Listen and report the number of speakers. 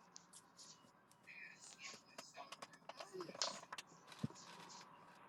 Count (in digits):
0